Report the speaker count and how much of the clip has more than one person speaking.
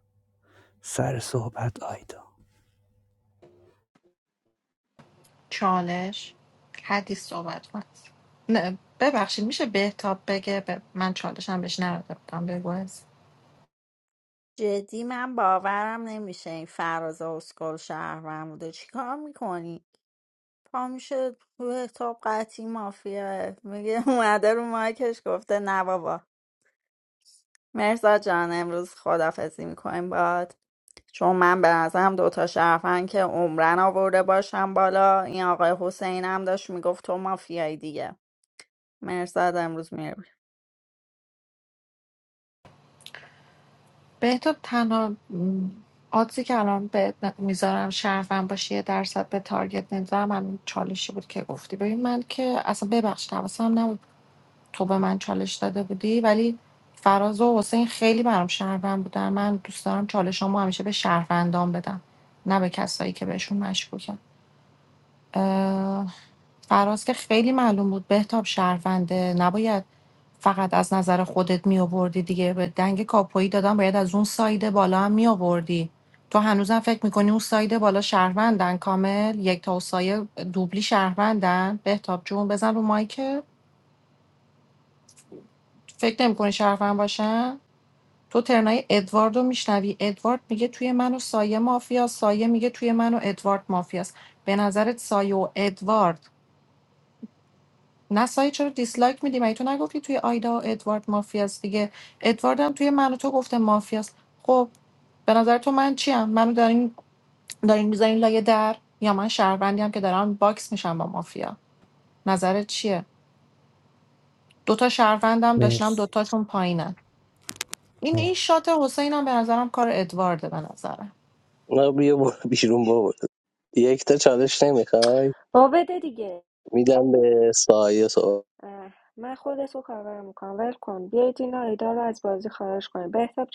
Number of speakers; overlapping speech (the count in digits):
5, under 1%